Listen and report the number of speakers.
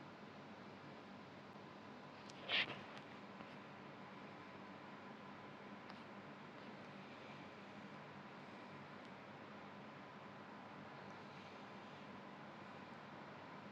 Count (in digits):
0